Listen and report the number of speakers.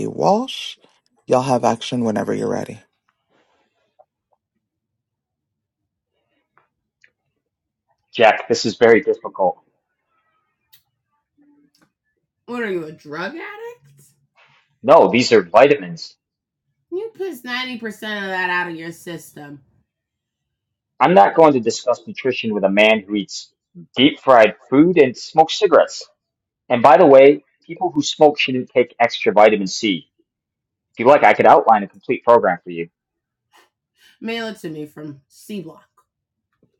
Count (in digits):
3